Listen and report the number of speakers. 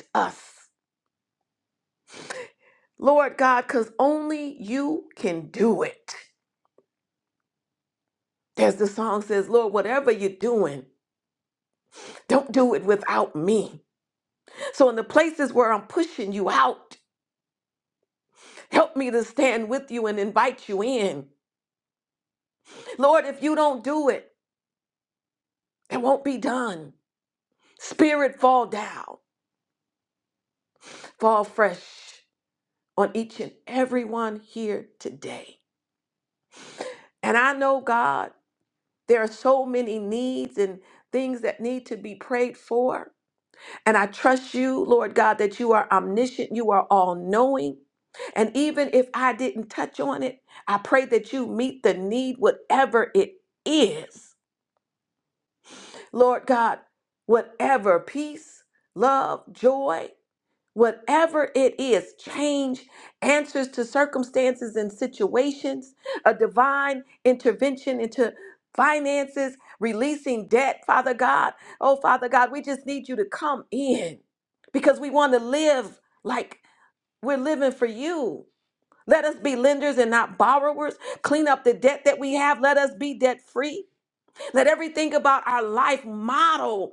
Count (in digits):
1